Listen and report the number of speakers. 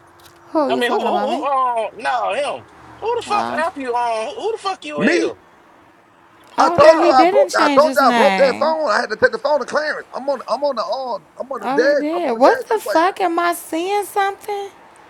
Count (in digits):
3